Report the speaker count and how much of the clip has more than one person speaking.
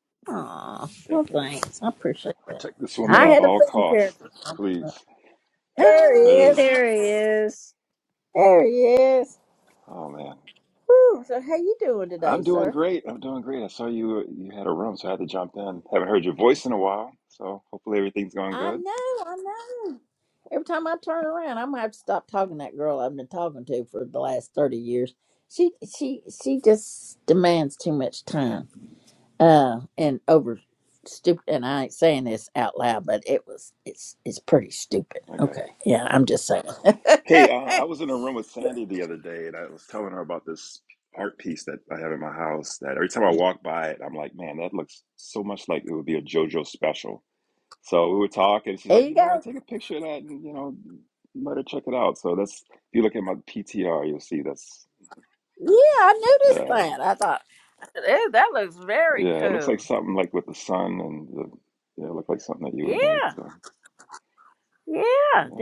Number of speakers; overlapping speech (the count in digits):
3, about 9%